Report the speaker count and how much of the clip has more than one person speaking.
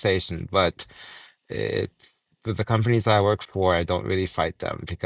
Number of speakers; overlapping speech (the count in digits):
1, no overlap